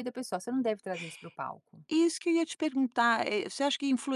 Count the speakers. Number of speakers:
2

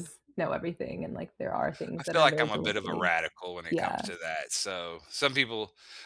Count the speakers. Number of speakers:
2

